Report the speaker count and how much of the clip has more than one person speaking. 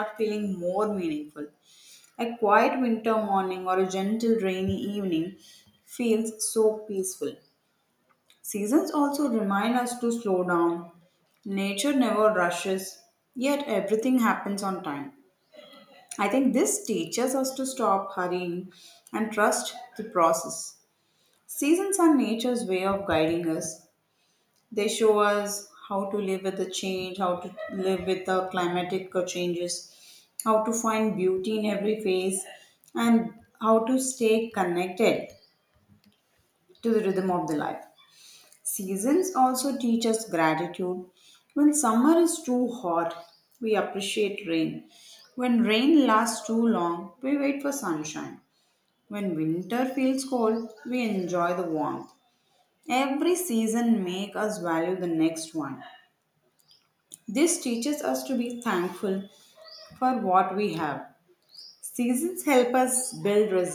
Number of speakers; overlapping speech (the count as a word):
one, no overlap